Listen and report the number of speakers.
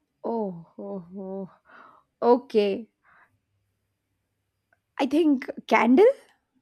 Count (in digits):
1